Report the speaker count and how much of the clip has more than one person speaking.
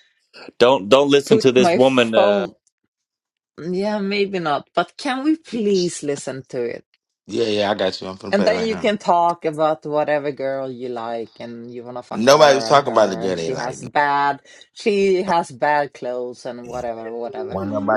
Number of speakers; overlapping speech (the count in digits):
3, about 20%